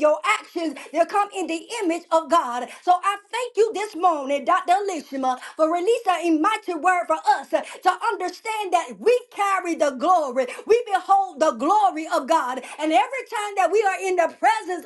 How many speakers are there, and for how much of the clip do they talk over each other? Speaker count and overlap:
one, no overlap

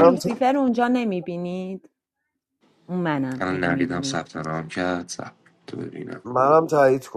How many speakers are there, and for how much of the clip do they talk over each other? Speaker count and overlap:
three, about 15%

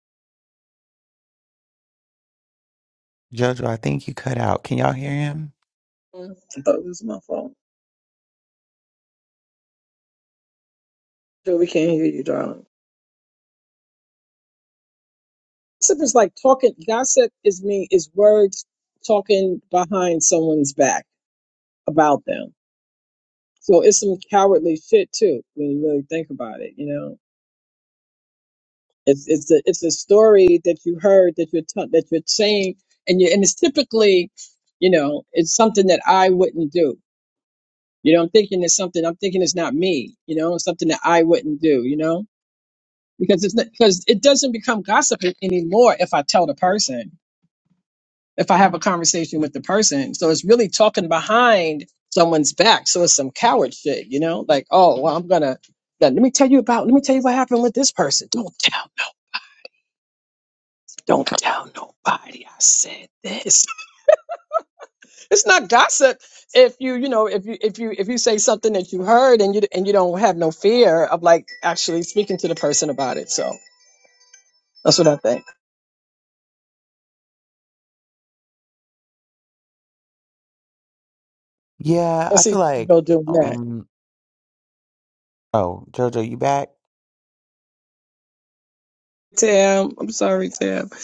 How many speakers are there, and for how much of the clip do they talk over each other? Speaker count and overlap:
two, about 1%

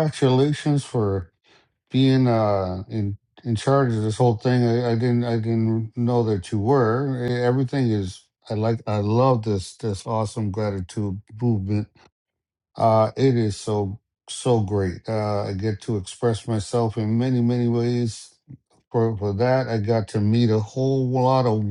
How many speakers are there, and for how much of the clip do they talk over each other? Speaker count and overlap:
one, no overlap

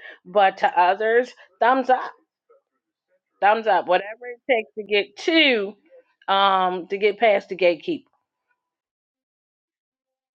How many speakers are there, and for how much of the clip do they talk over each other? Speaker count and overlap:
one, no overlap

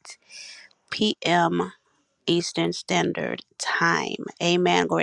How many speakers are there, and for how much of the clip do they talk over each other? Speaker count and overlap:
one, no overlap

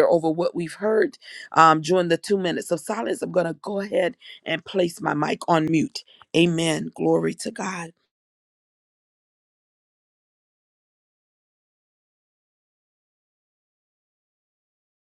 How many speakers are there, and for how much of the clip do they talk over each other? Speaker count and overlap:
one, no overlap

